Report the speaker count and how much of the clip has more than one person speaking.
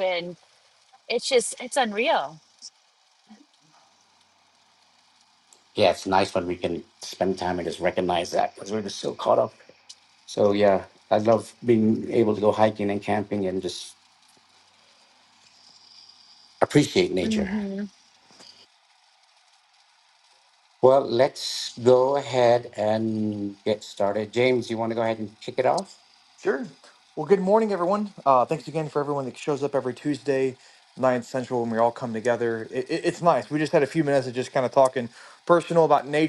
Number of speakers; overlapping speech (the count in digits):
3, no overlap